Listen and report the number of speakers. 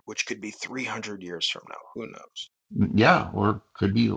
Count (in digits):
2